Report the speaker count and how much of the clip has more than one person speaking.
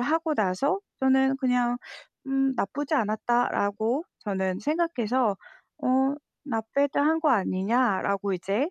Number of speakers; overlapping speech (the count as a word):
one, no overlap